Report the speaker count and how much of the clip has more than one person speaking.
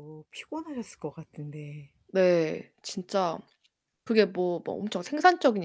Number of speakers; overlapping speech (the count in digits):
2, no overlap